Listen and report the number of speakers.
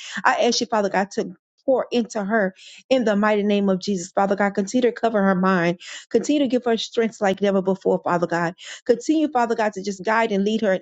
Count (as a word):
one